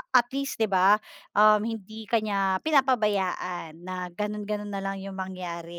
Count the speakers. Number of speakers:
1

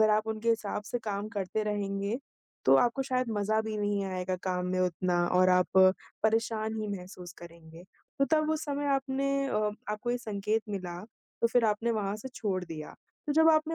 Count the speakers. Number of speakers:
1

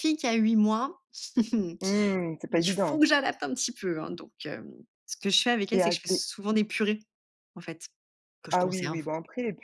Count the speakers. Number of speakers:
2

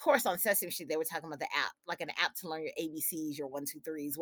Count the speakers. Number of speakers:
1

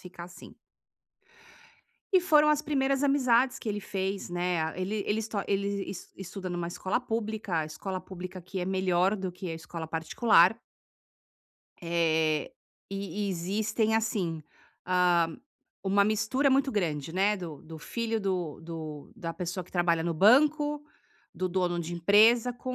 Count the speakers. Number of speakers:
1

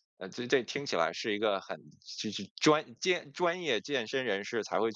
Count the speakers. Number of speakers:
1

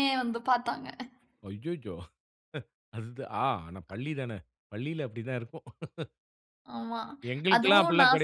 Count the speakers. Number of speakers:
2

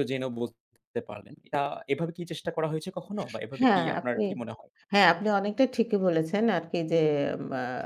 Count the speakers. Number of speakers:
2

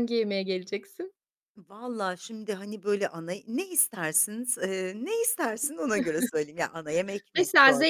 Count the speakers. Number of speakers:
2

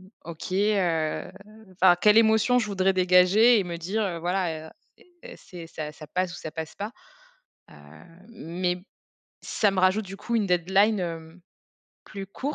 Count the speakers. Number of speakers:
1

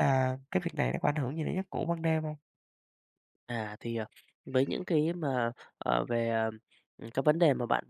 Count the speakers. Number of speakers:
2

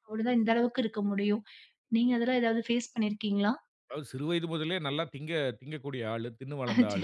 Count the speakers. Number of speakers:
2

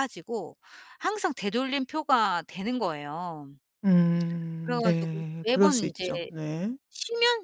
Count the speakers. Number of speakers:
2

